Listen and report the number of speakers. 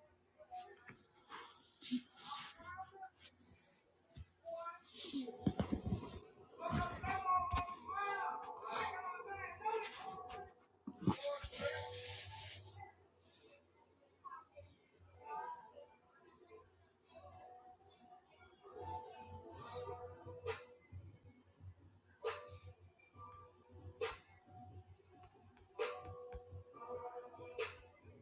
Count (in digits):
0